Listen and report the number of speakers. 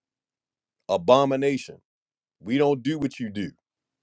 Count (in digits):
1